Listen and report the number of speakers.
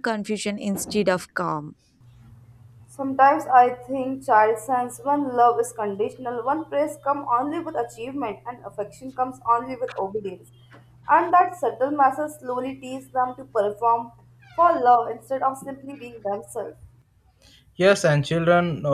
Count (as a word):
three